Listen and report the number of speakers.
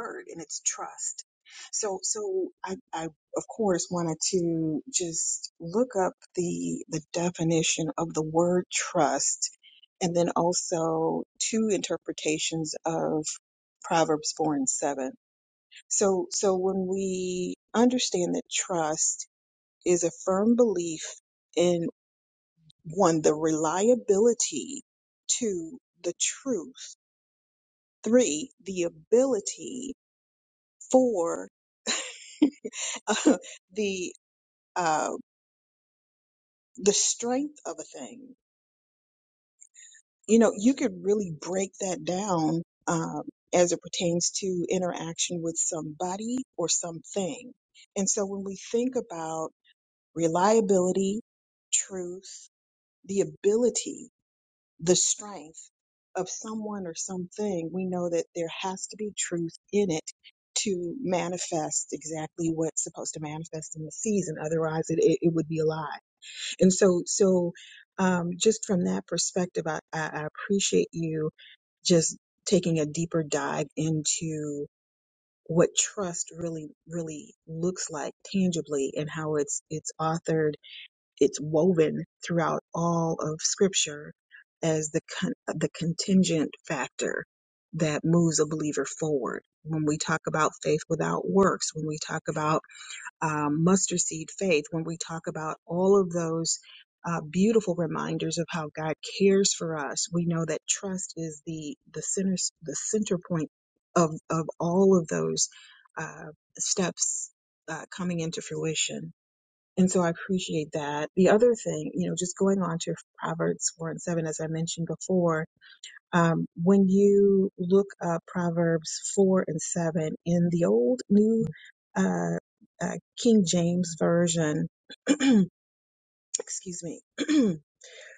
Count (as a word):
one